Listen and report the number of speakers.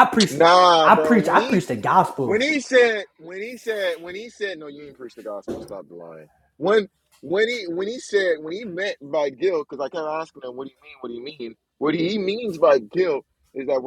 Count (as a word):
two